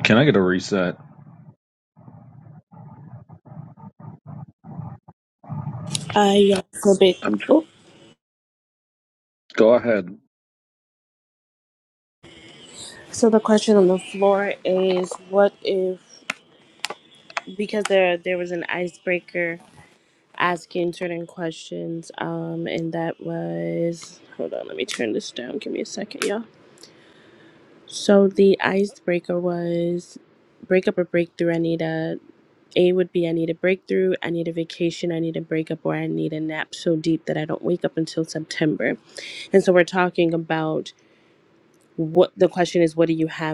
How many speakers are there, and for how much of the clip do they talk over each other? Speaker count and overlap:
two, about 1%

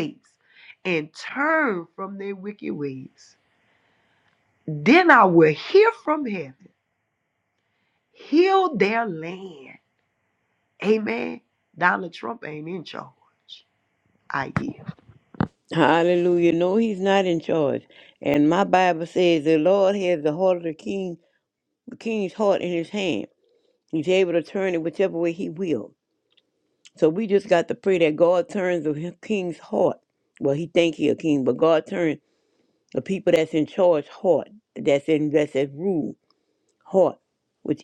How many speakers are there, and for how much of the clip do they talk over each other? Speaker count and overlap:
two, no overlap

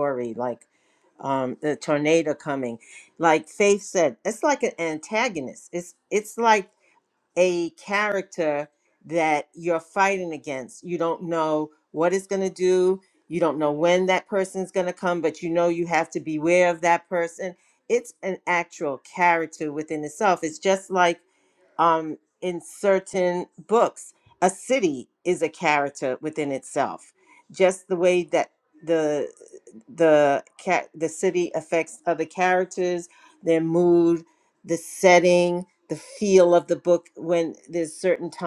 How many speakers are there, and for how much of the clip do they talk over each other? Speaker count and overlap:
one, no overlap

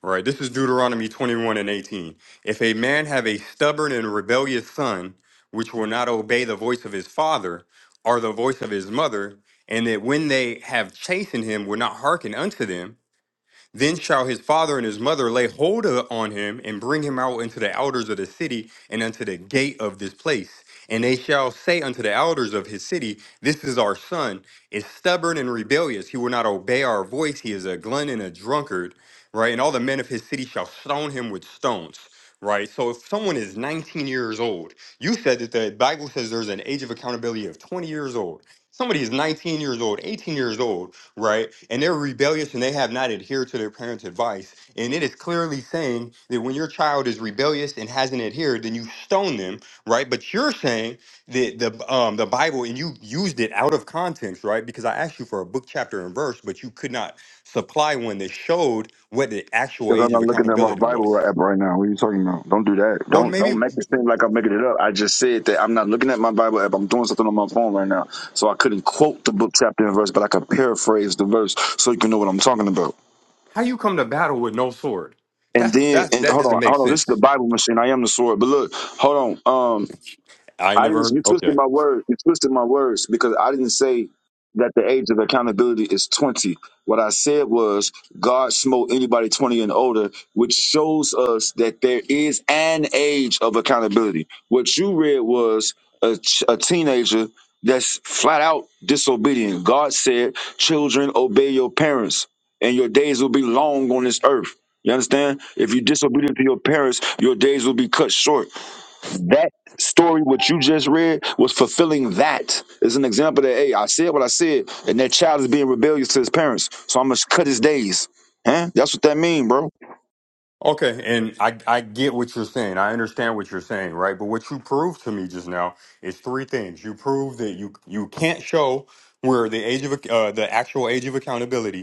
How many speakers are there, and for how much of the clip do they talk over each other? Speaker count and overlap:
two, about 3%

